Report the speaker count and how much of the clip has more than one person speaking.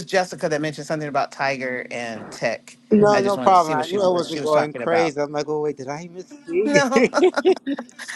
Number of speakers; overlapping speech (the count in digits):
2, about 29%